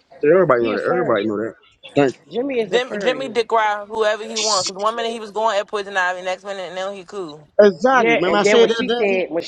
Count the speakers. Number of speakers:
3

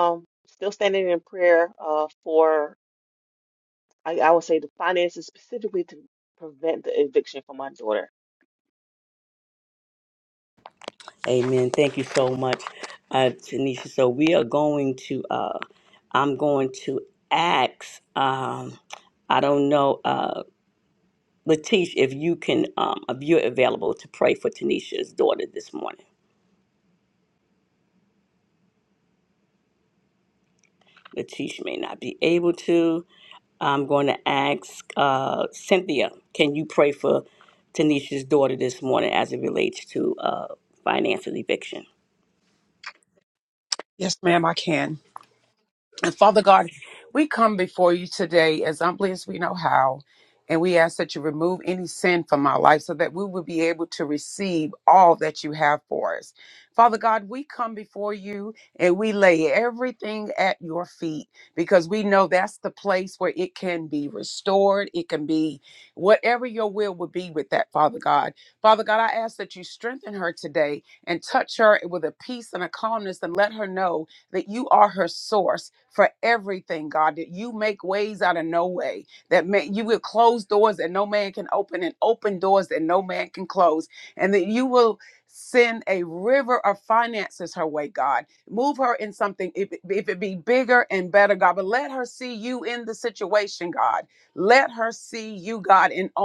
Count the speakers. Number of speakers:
3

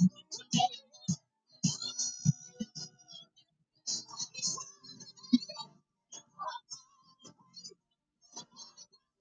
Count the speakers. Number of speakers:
0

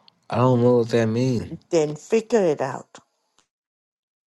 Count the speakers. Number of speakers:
2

